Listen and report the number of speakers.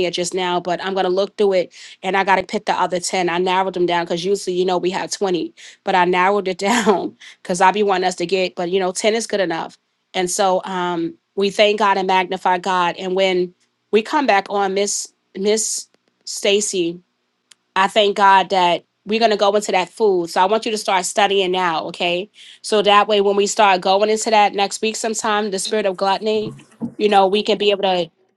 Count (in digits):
1